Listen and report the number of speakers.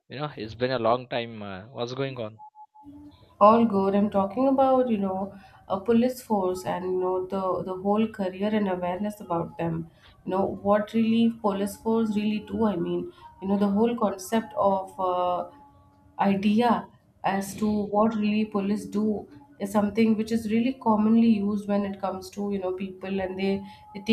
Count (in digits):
2